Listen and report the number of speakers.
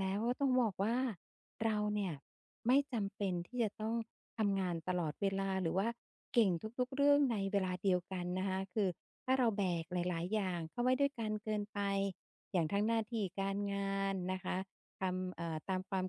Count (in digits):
1